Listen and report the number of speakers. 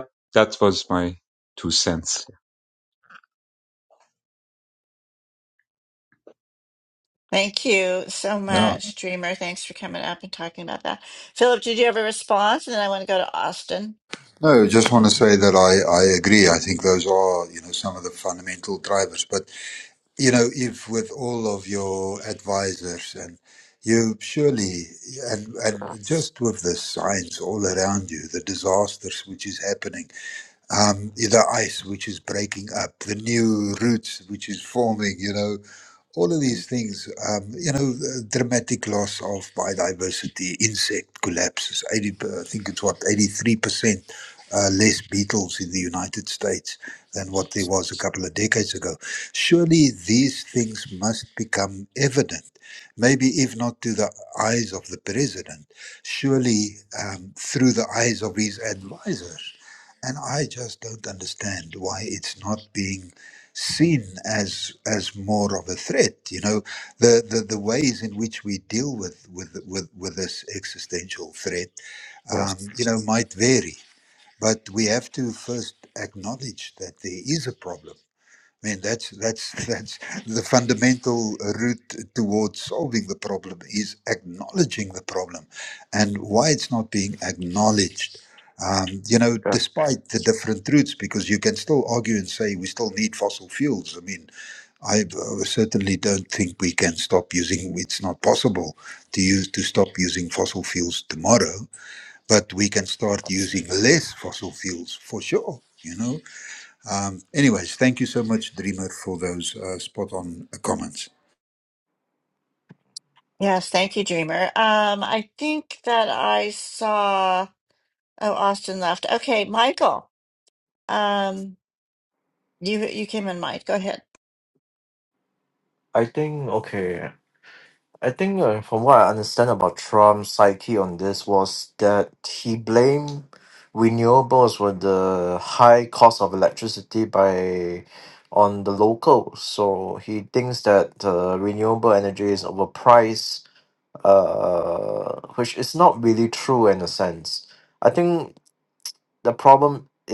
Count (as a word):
four